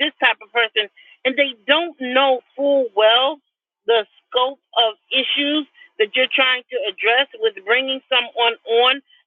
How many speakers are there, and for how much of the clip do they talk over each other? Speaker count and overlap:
1, no overlap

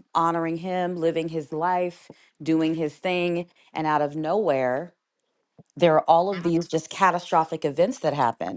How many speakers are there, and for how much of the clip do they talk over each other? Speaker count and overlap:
1, no overlap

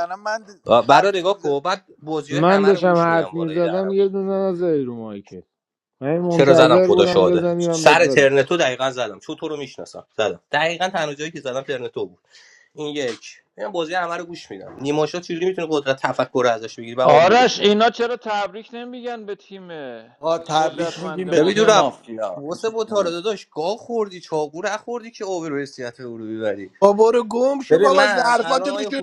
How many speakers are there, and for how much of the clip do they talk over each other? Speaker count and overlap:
5, about 28%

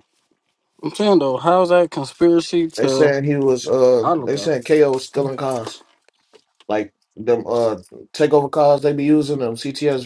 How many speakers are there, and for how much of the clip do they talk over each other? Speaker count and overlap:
2, about 8%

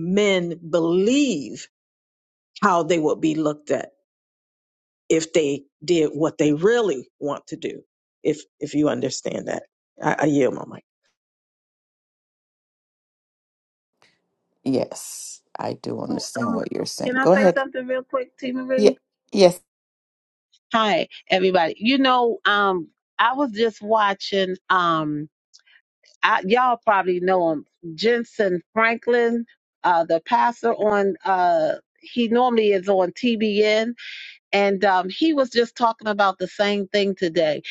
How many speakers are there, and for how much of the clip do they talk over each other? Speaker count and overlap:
3, about 3%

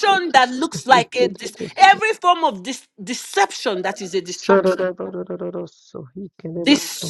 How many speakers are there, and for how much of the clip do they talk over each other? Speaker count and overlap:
2, about 30%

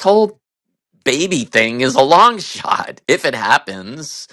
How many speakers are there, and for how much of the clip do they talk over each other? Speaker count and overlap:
1, no overlap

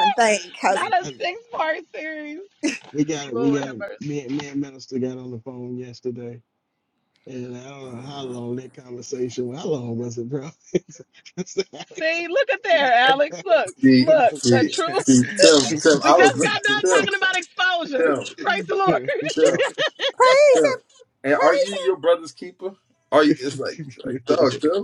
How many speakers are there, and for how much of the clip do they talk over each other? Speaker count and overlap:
4, about 17%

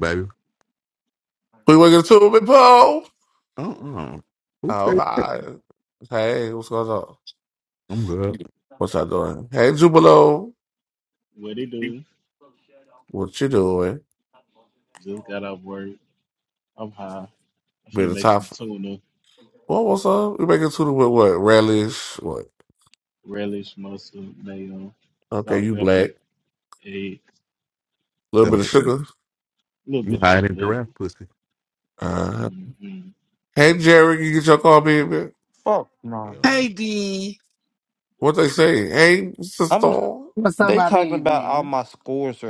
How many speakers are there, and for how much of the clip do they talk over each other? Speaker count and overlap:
5, about 9%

